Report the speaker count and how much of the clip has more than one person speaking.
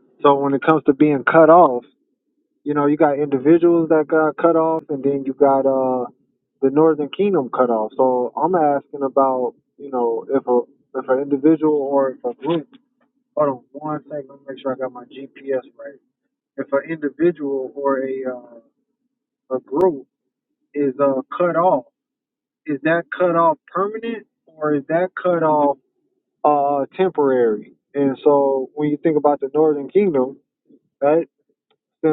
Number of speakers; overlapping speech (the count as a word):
one, no overlap